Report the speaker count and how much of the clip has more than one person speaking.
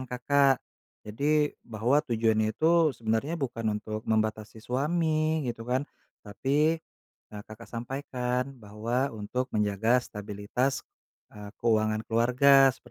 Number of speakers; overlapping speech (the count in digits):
1, no overlap